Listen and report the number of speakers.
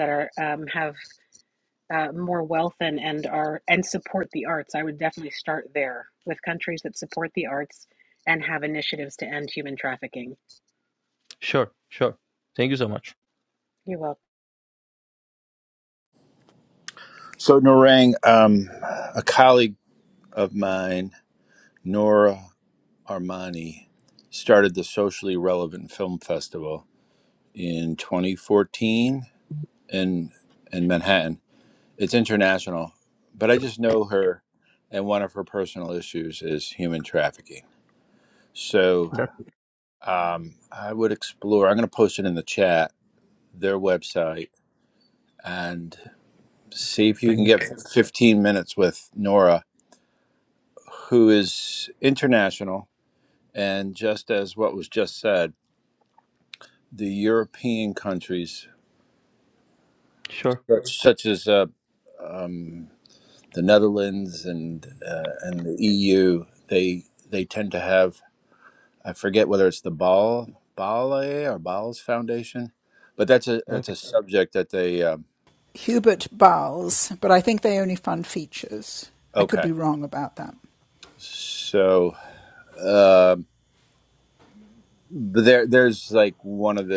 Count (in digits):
4